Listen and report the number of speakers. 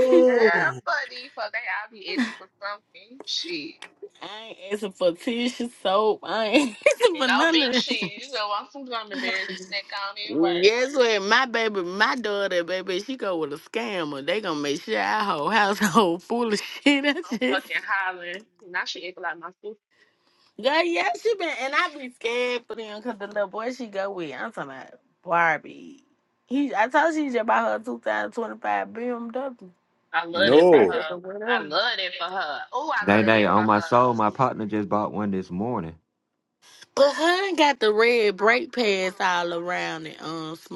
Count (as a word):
four